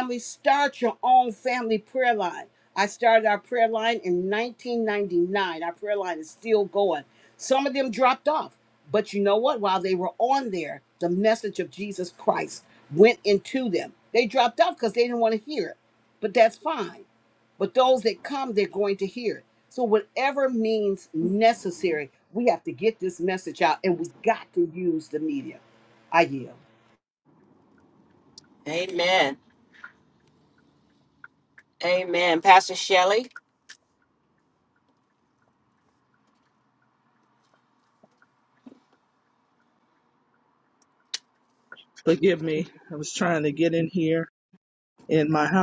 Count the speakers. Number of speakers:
3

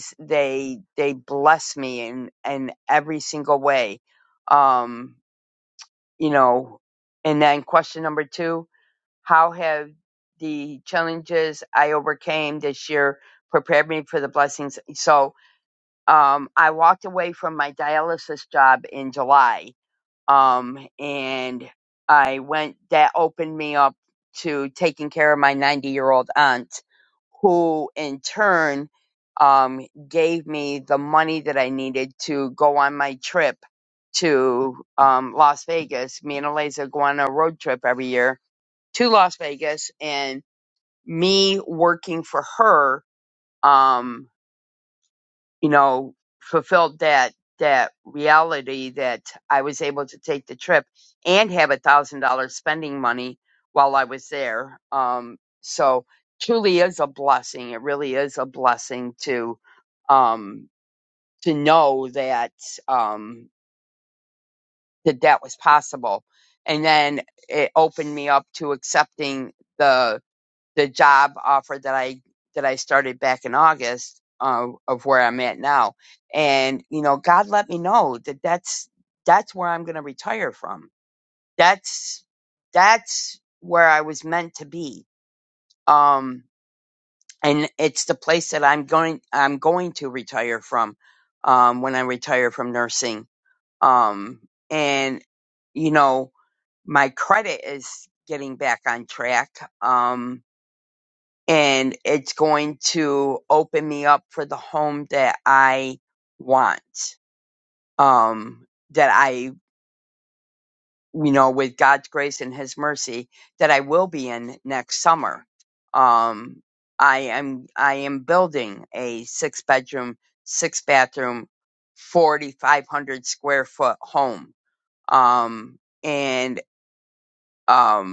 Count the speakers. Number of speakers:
1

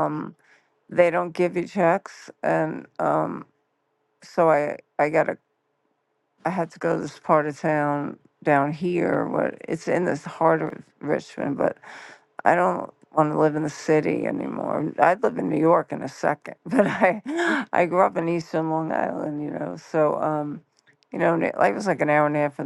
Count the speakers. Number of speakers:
1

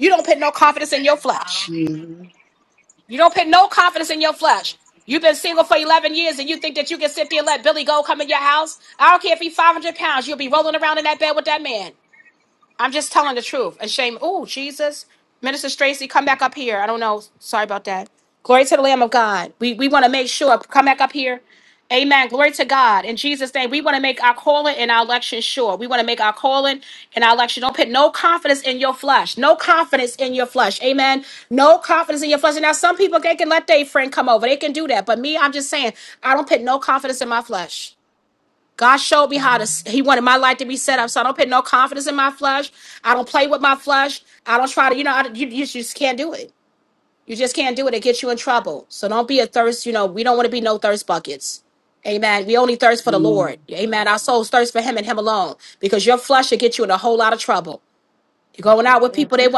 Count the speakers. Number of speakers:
2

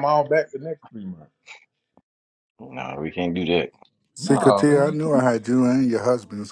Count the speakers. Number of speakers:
3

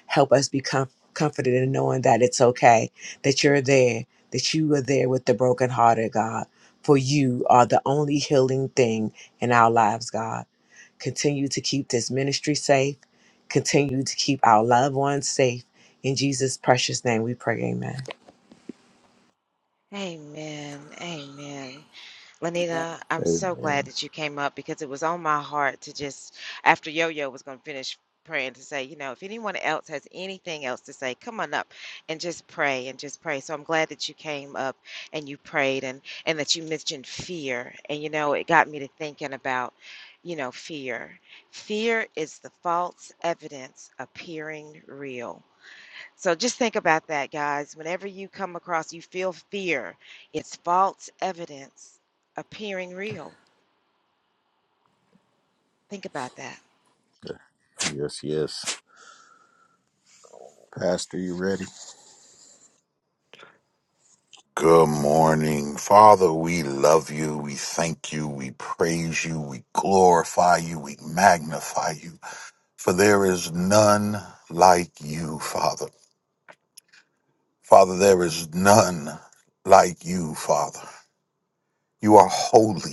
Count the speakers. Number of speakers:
4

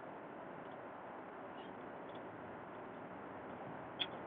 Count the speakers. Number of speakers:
0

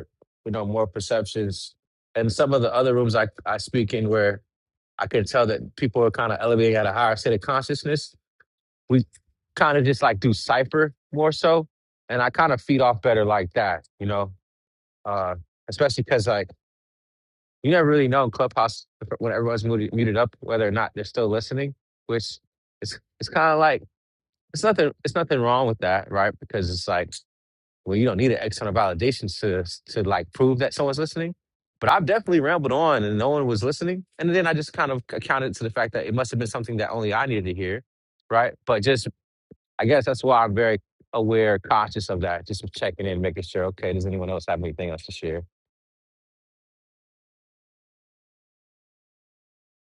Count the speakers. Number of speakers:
1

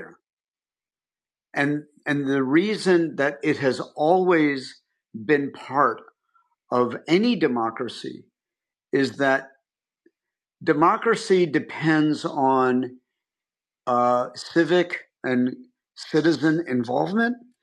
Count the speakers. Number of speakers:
1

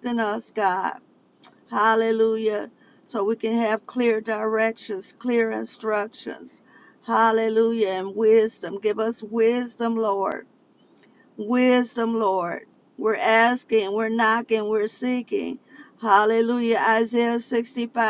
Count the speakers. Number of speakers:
1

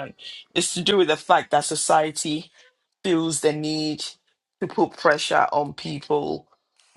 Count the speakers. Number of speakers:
1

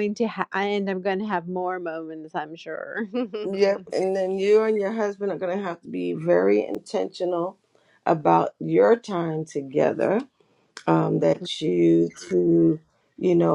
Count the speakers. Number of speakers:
2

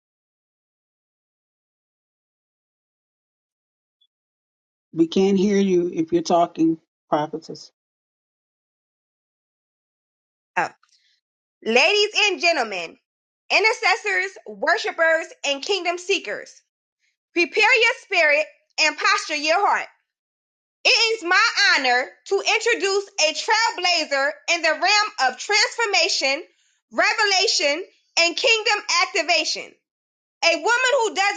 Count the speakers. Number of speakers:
2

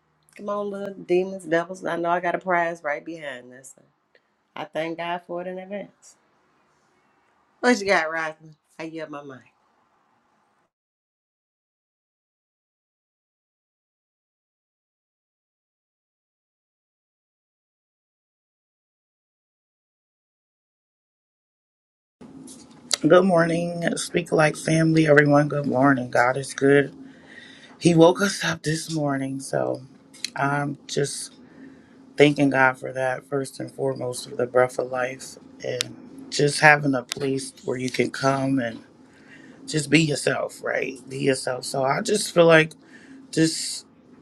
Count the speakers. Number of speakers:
2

